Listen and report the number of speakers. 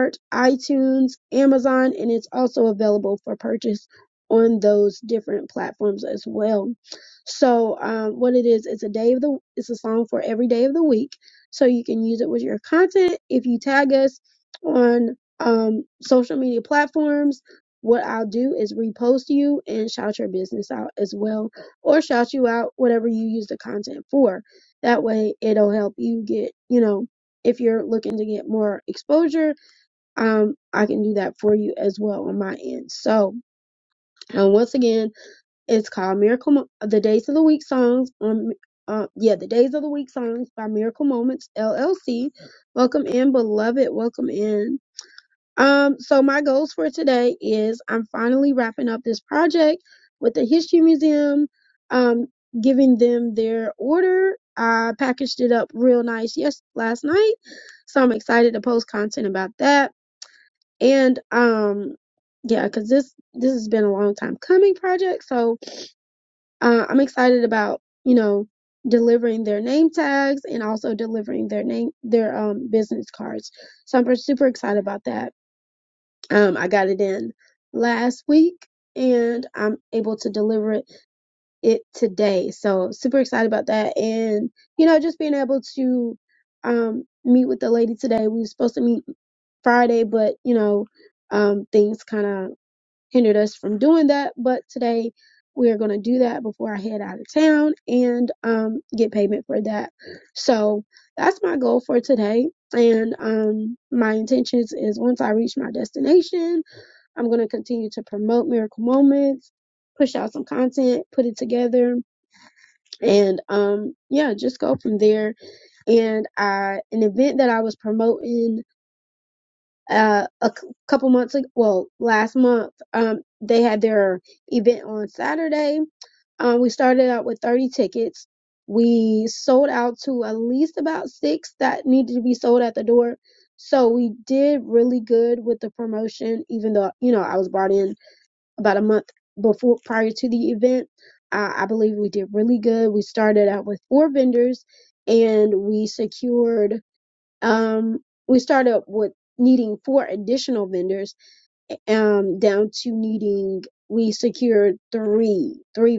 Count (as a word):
one